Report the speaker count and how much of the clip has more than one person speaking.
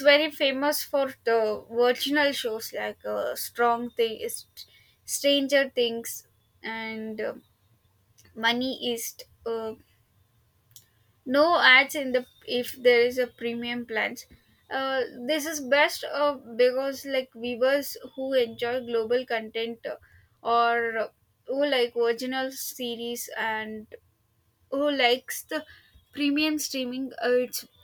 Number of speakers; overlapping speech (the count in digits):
1, no overlap